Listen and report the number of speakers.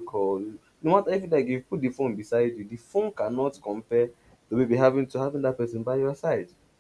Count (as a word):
one